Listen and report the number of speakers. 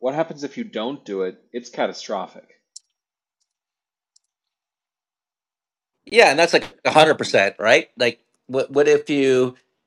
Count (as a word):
two